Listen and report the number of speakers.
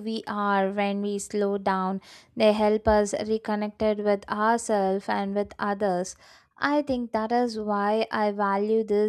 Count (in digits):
1